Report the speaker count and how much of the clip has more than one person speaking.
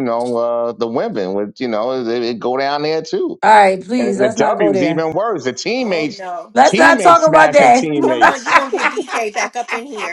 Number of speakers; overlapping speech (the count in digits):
3, about 29%